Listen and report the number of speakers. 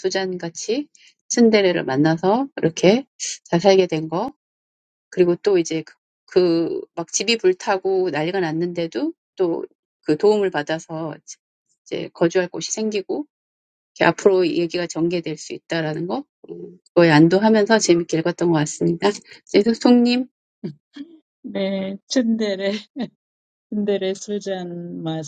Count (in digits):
2